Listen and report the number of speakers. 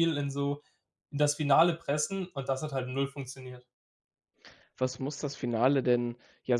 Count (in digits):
2